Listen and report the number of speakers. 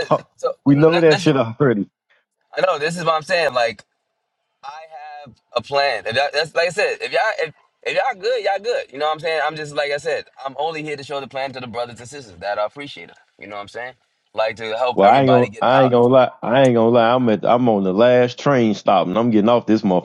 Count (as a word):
two